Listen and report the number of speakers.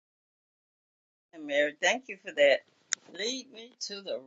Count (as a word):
one